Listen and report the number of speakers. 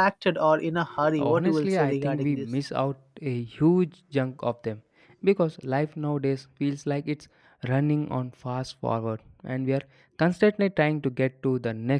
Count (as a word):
two